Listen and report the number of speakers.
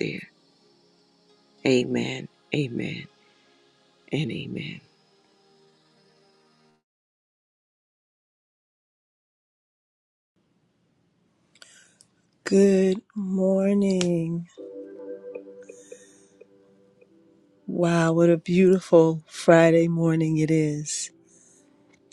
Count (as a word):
two